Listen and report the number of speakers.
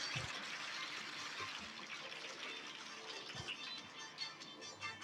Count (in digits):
0